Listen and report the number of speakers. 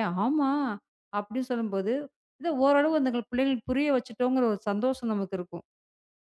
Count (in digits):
1